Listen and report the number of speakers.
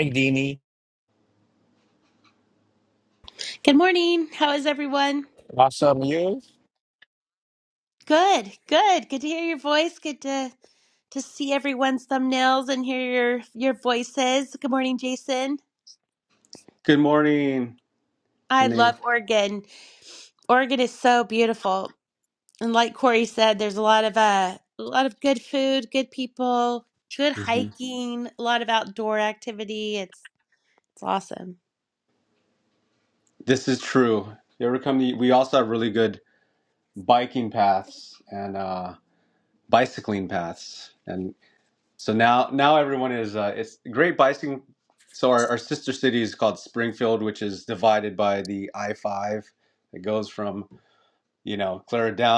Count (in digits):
3